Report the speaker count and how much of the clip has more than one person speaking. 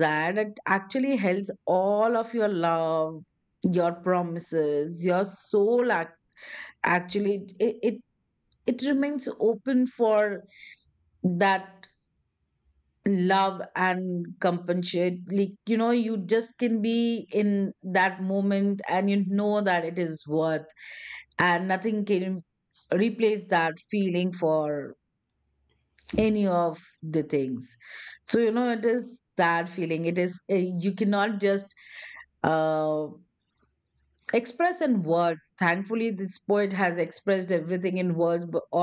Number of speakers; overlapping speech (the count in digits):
1, no overlap